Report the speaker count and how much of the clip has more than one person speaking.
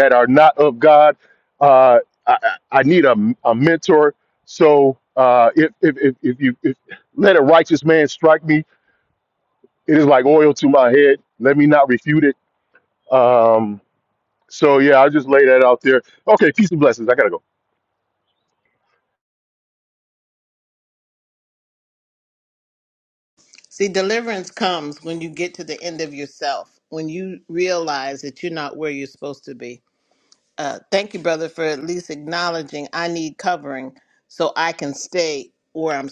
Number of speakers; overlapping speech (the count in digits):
2, no overlap